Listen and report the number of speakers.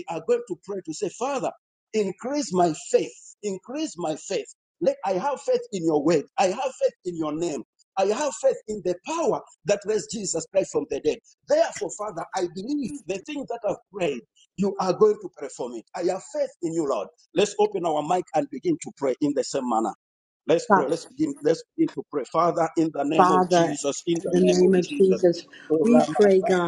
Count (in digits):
2